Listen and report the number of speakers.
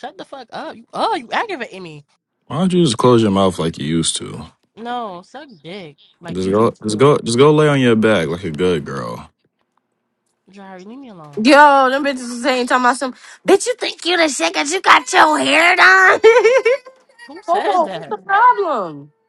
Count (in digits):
3